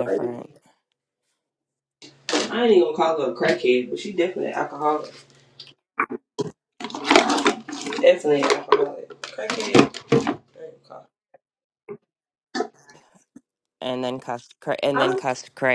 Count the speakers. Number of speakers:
2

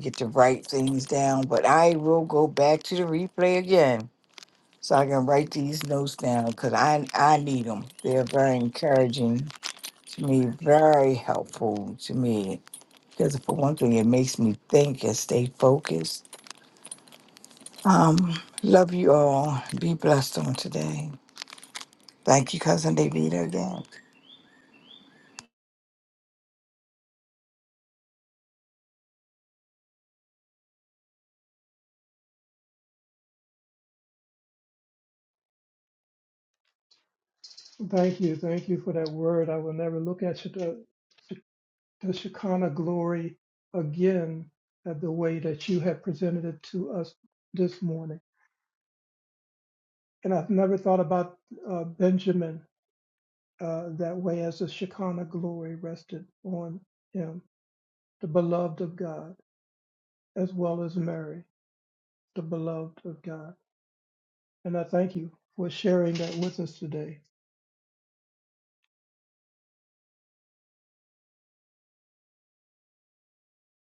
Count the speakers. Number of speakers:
2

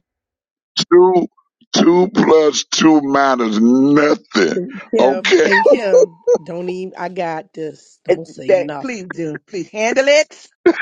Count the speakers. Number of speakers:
3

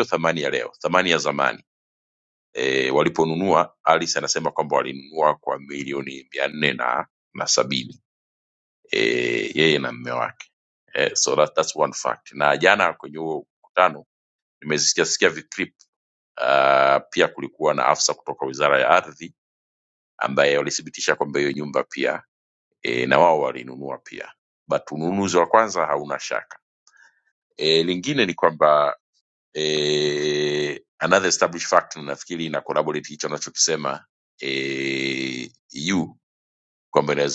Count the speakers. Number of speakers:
1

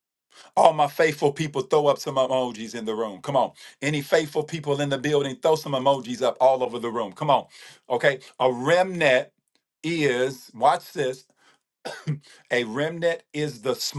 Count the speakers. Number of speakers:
1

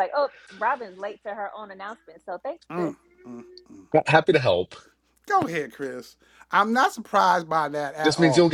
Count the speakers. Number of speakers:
3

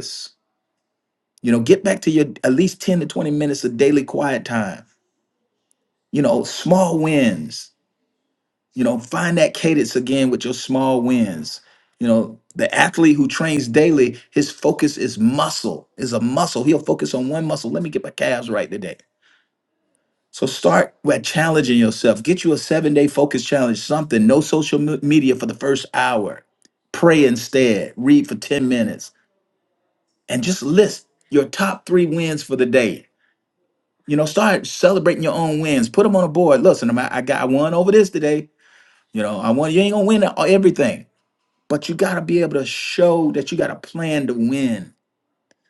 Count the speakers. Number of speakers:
1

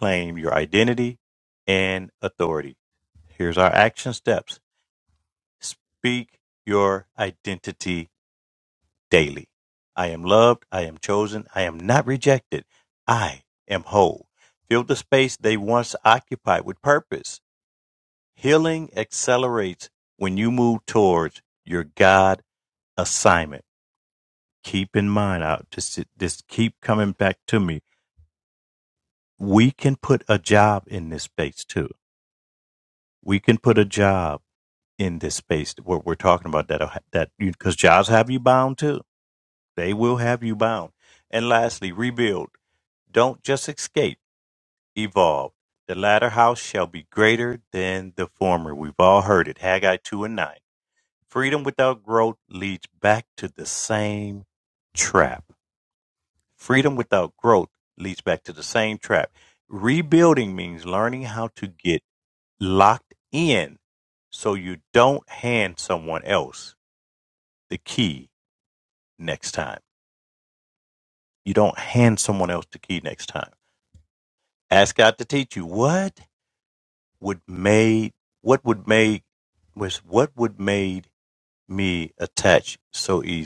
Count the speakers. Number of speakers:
1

